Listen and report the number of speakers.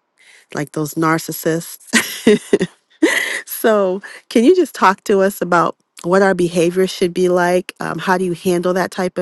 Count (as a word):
one